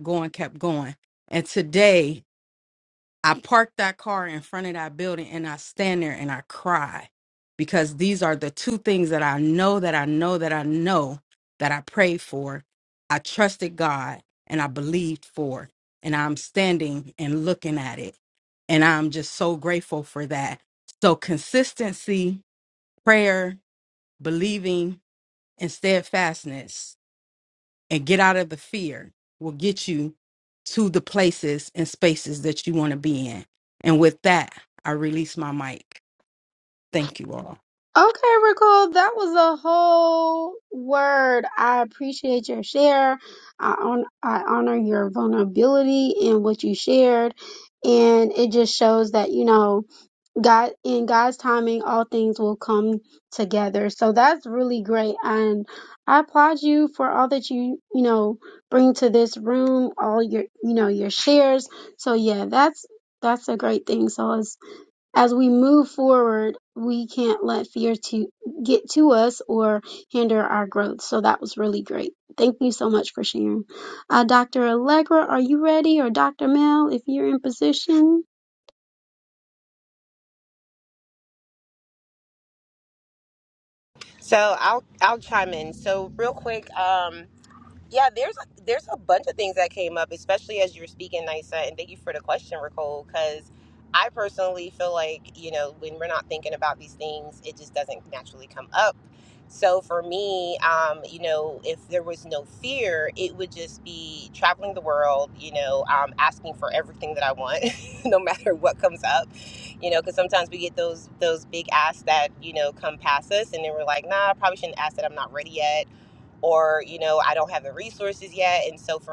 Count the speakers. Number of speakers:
3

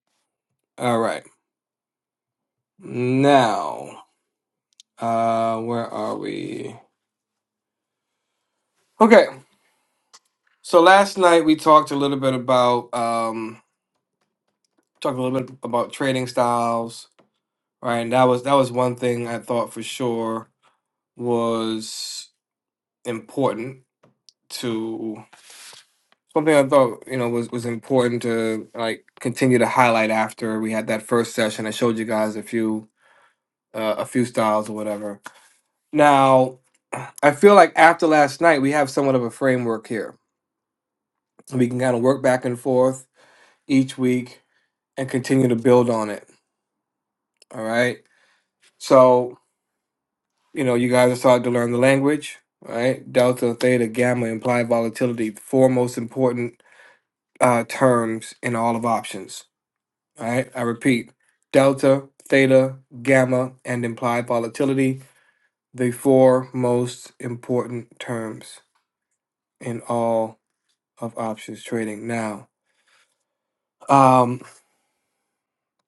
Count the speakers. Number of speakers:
1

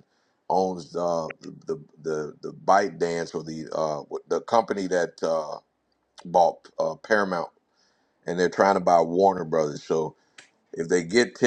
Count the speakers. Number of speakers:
1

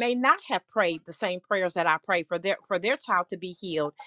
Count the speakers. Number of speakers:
1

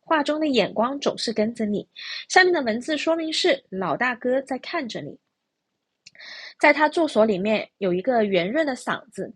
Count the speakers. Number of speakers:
1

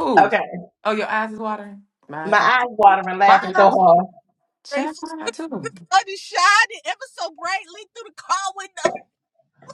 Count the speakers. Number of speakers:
3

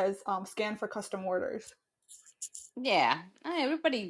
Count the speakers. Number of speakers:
2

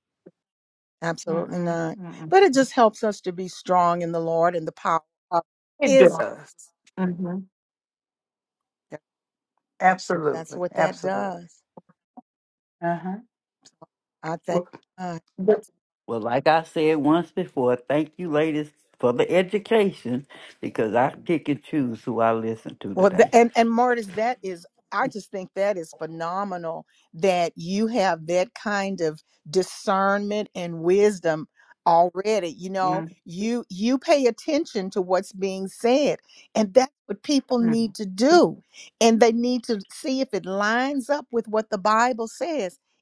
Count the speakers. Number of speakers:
3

